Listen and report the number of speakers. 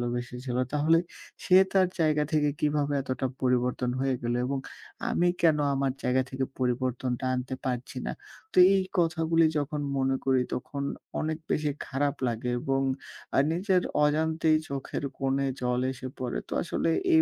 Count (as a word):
one